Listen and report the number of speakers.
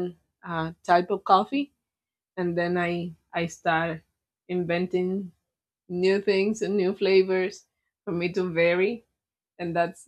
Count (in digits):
1